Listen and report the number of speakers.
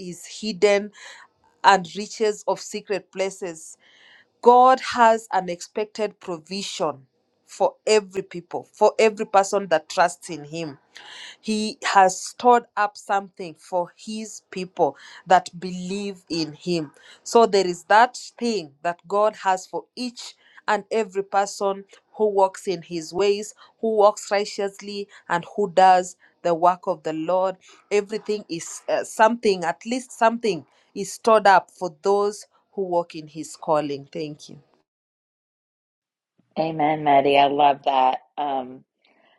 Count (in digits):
2